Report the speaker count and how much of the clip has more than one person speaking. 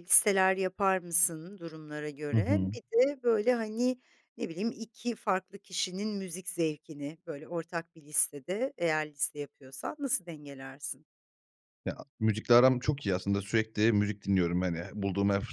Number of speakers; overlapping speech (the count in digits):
2, about 3%